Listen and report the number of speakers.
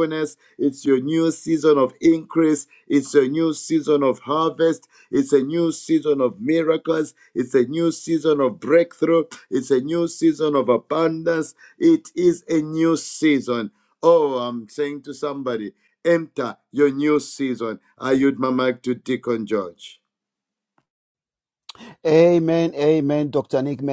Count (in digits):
2